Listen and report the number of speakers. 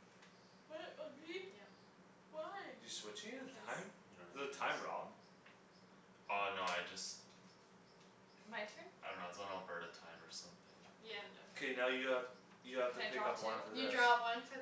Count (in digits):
4